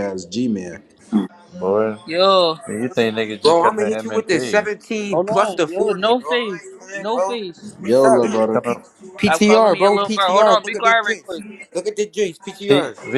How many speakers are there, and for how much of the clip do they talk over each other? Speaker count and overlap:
4, about 48%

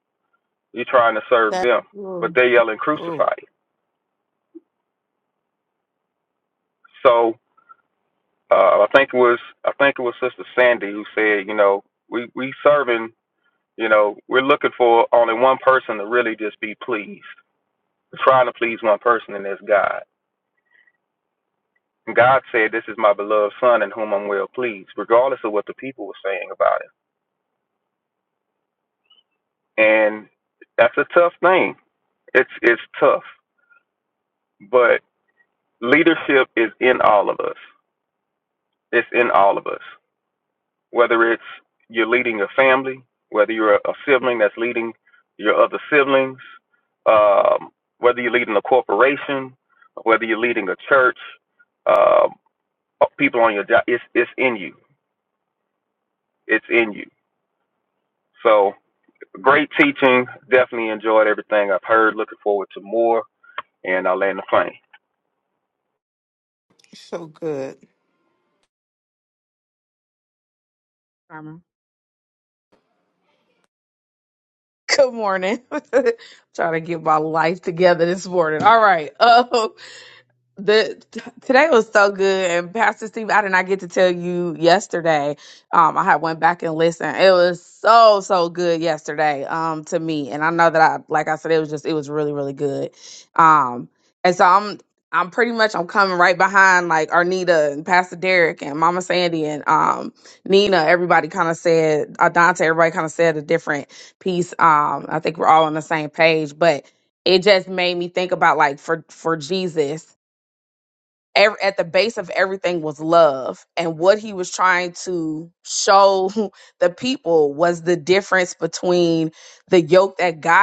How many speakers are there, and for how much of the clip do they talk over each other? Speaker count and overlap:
3, about 1%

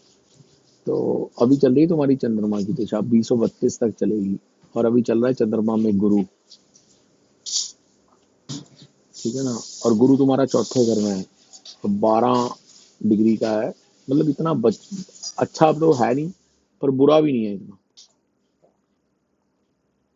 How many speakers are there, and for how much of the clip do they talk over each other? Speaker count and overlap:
1, no overlap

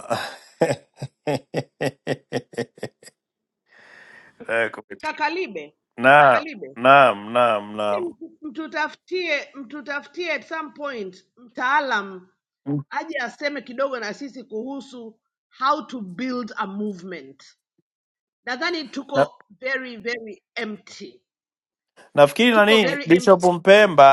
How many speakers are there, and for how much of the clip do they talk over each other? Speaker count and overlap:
2, about 6%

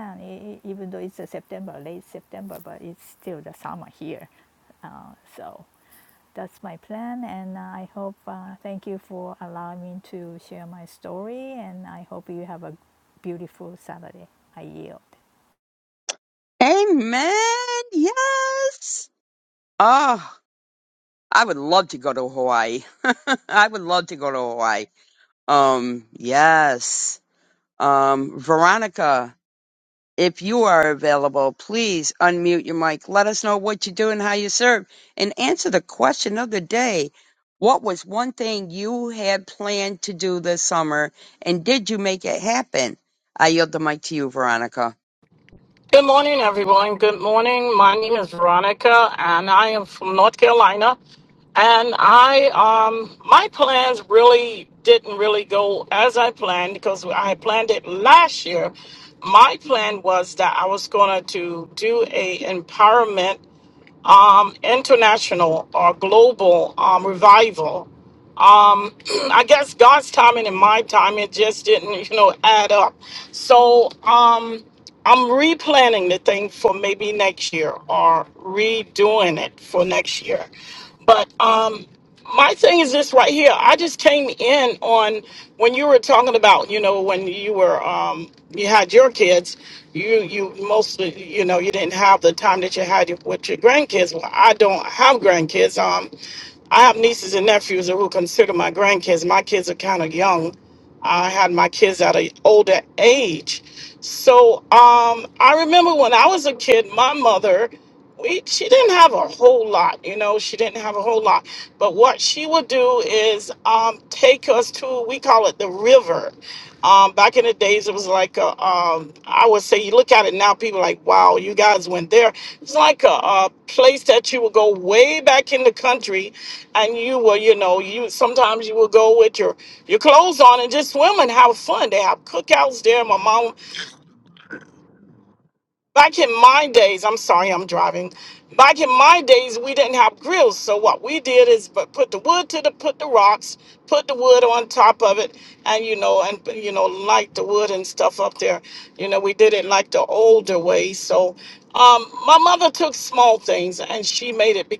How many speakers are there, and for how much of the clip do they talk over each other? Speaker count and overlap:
3, no overlap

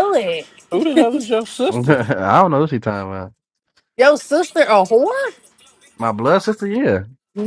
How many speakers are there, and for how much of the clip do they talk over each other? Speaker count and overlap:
3, about 4%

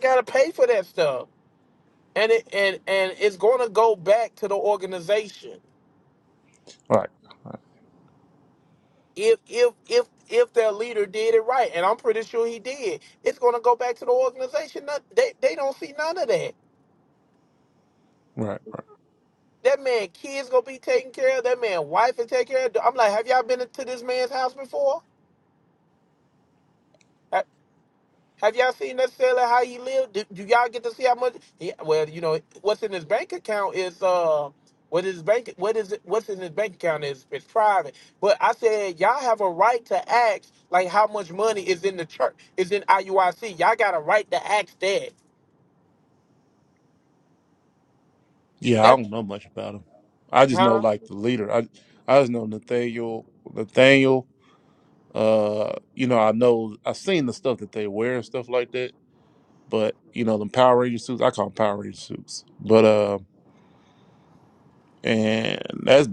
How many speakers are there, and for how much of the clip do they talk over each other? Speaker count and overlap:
2, about 1%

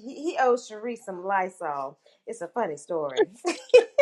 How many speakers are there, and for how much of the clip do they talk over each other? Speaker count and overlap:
1, no overlap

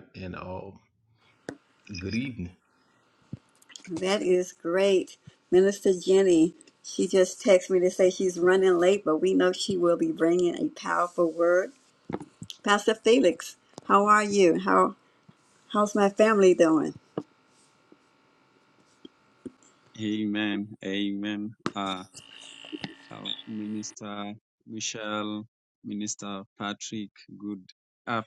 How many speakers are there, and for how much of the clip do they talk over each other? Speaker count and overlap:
3, no overlap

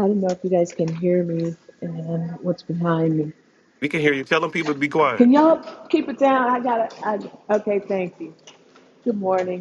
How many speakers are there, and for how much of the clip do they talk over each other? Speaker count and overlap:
2, about 1%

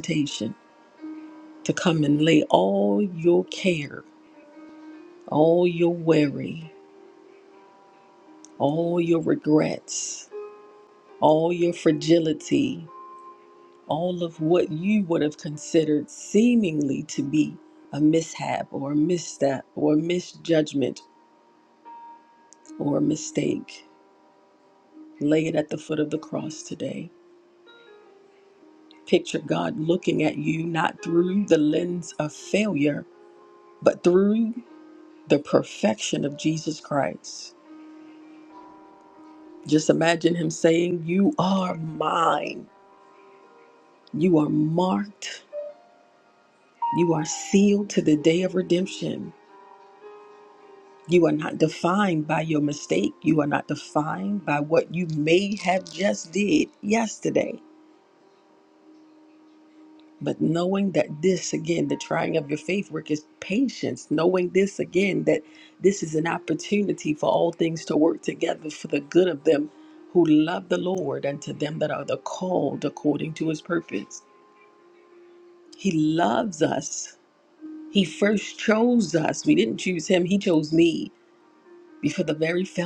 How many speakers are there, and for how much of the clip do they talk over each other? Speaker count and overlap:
1, no overlap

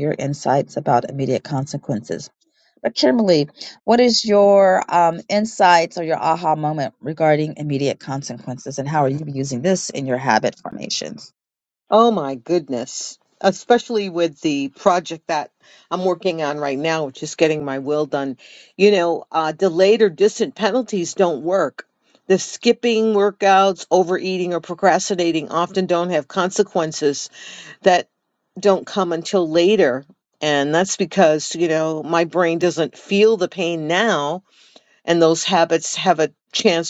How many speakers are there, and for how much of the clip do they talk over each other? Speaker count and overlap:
2, no overlap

